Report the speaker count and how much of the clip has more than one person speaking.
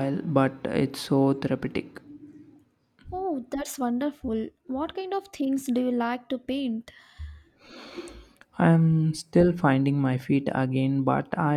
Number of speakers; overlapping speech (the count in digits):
2, no overlap